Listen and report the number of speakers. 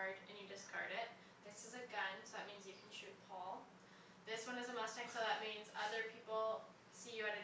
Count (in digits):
1